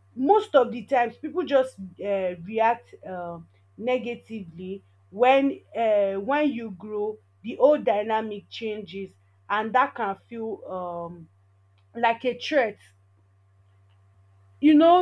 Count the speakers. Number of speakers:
1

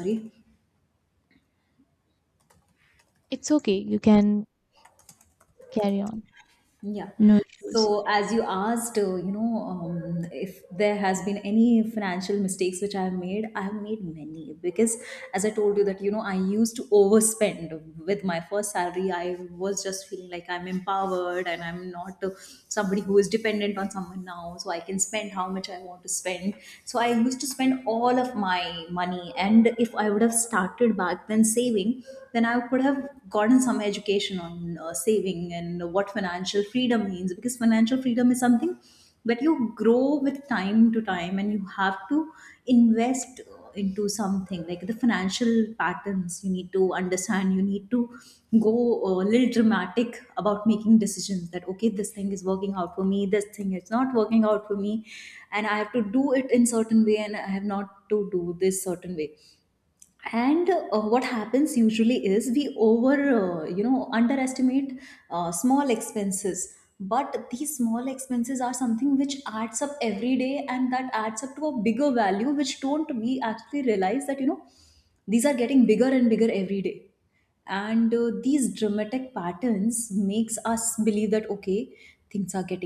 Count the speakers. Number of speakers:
2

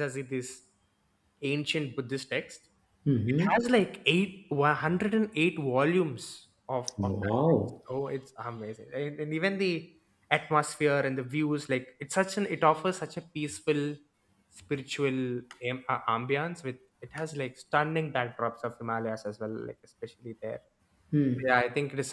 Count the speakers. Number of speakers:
2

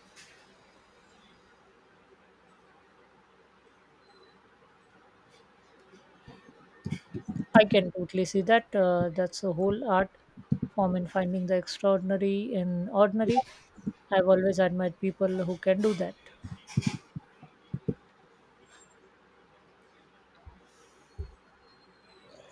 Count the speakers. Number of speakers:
1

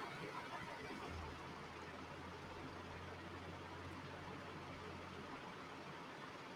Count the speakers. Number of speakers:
0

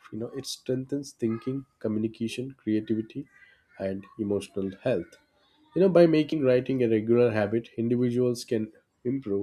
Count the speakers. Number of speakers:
1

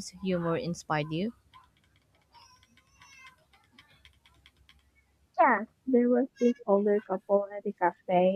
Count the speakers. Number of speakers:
2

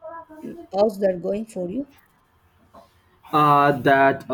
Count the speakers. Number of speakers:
2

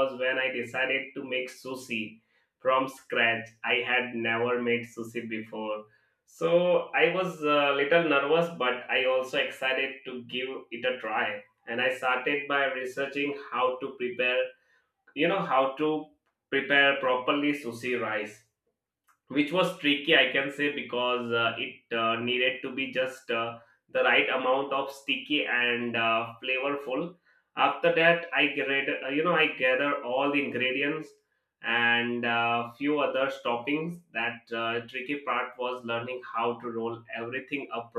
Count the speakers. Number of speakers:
1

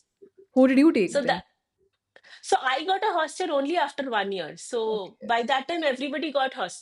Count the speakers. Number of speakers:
2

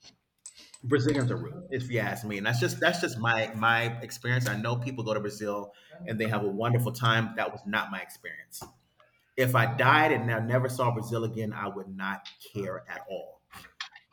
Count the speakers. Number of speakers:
1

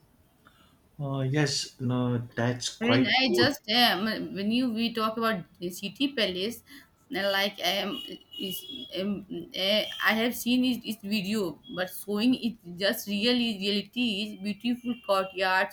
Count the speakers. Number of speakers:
2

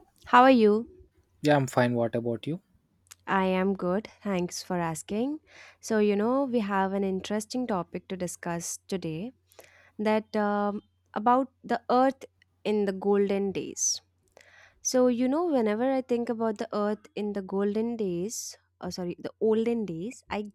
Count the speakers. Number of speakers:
2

